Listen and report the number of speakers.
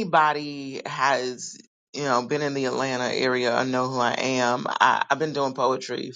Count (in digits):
1